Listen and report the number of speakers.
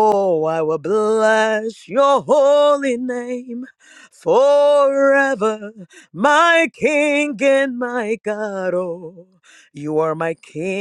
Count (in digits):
1